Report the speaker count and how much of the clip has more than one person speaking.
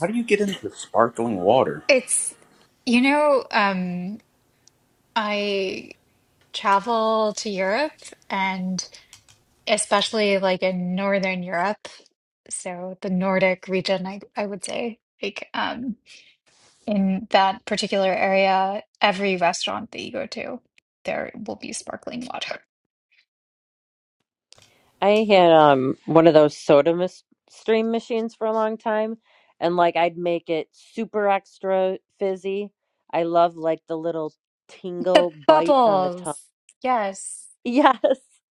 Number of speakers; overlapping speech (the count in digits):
3, about 3%